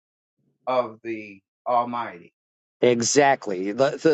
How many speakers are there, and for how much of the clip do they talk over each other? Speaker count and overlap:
two, no overlap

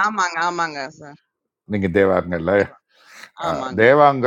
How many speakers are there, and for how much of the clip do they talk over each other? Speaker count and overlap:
two, about 11%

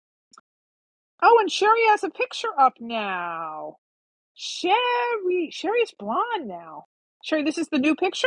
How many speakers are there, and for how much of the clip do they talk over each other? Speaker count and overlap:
one, no overlap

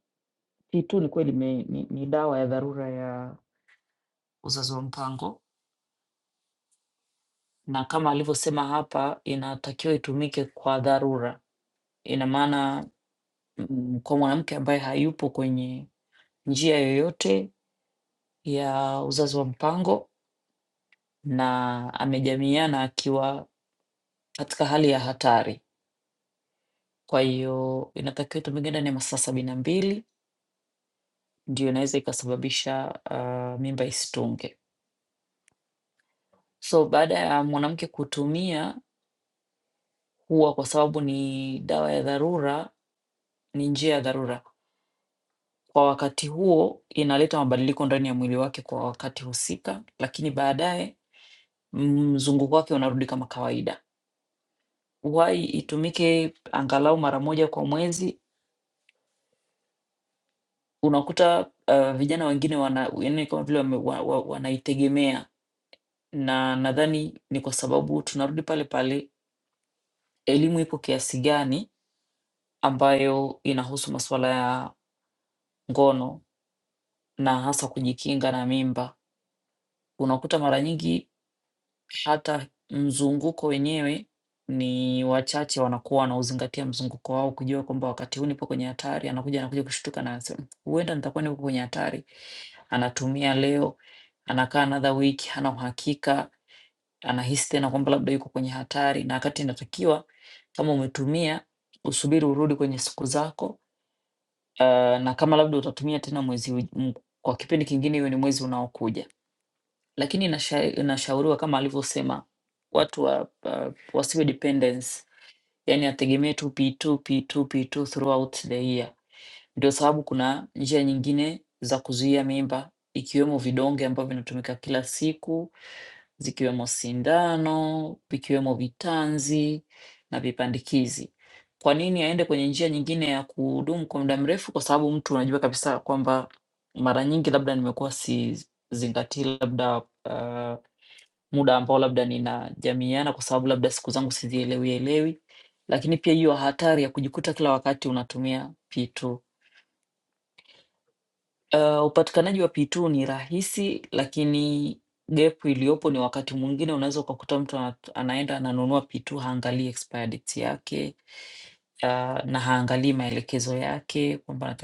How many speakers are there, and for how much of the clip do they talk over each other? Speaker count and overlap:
one, no overlap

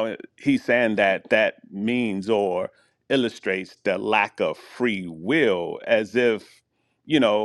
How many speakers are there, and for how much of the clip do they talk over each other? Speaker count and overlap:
one, no overlap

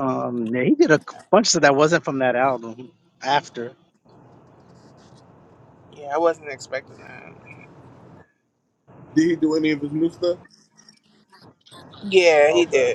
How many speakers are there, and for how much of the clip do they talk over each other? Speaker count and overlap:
three, about 3%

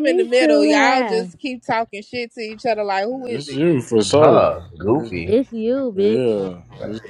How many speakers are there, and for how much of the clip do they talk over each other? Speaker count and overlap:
four, about 34%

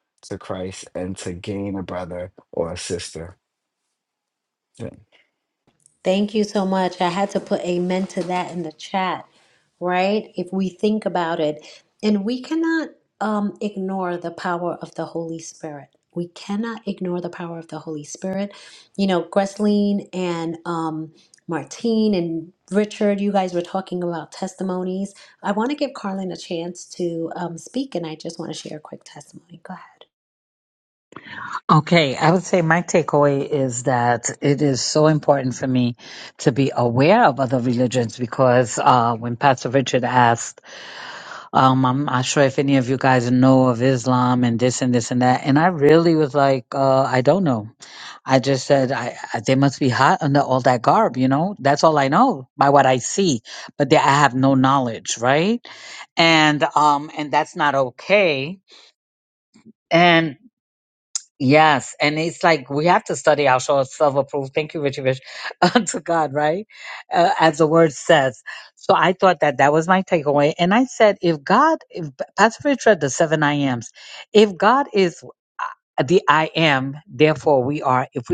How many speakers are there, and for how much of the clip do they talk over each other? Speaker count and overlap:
three, no overlap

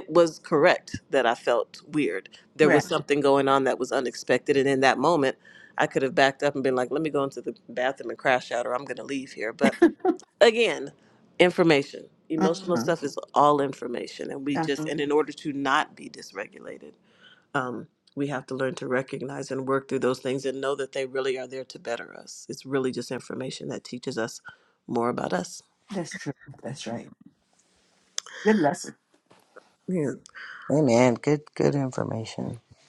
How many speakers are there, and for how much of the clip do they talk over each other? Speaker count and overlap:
three, about 3%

